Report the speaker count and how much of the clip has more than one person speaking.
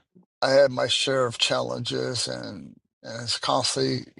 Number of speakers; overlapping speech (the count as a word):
one, no overlap